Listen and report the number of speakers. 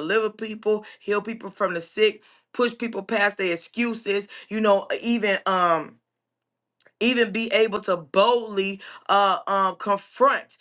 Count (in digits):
1